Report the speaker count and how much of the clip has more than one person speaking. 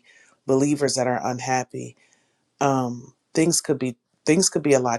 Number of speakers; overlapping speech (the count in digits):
1, no overlap